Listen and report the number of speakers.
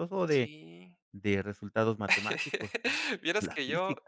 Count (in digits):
2